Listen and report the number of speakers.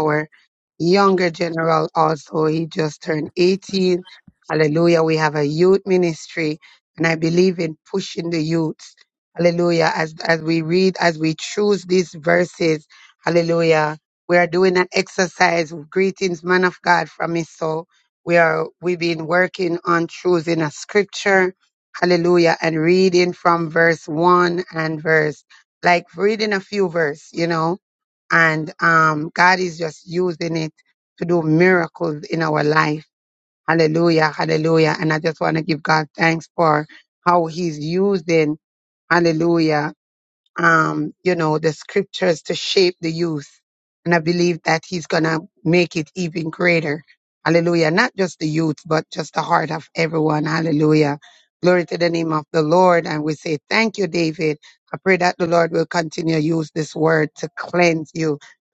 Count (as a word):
one